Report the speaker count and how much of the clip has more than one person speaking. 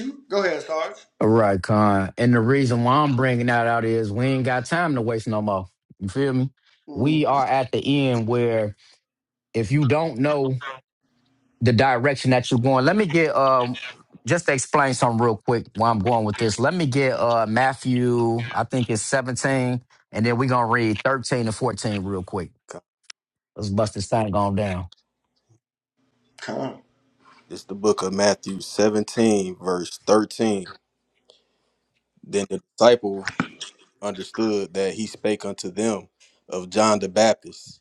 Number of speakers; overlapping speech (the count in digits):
3, about 1%